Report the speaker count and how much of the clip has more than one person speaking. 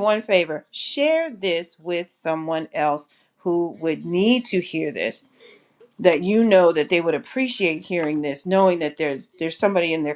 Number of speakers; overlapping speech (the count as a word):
one, no overlap